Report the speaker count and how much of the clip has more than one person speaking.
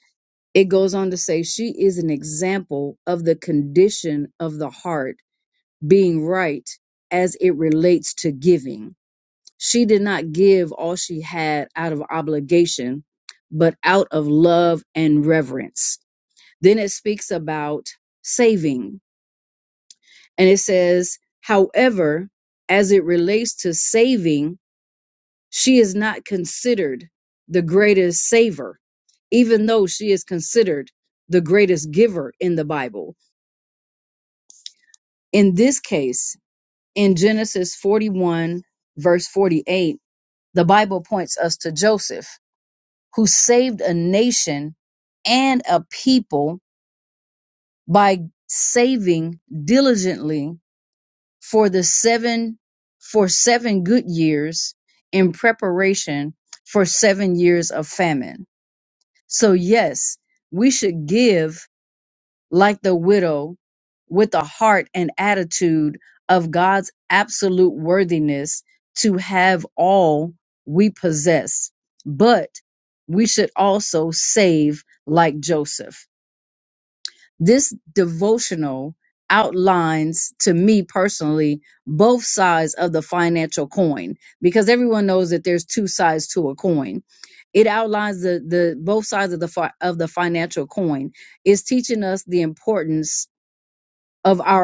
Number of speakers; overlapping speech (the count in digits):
1, no overlap